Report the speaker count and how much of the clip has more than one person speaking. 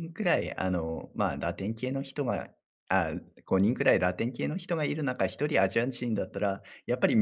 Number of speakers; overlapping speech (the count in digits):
1, no overlap